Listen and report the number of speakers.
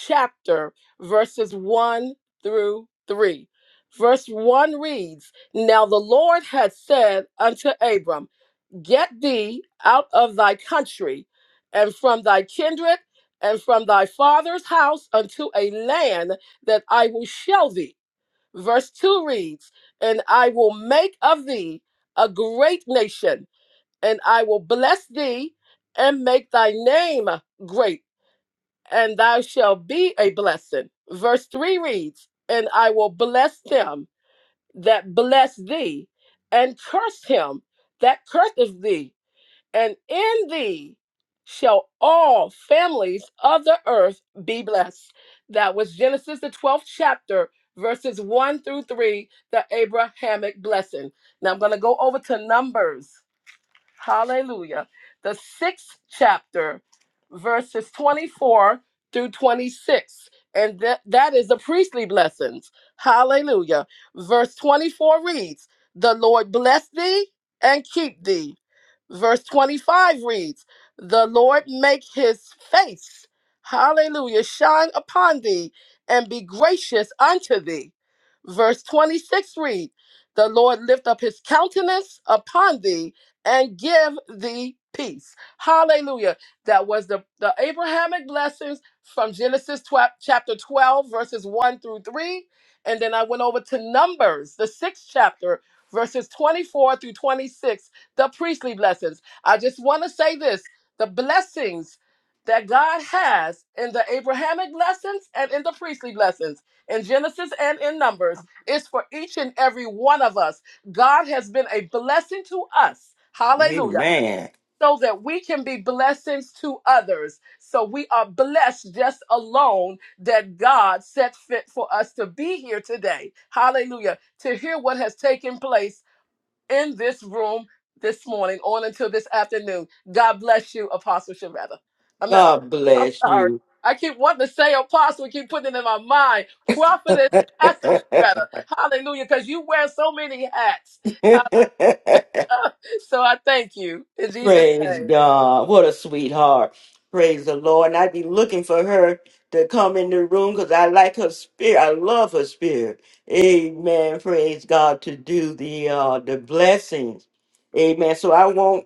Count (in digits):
2